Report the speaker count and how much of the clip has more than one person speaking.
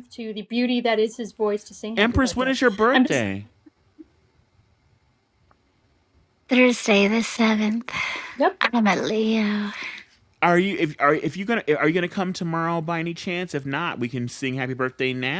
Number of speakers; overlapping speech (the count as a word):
three, about 6%